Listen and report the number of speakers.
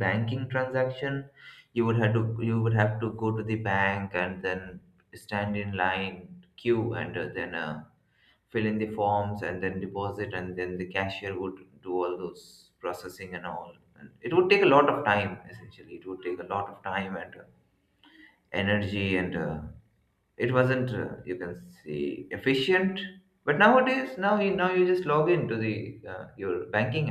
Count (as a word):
one